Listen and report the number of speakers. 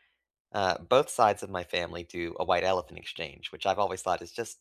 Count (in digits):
1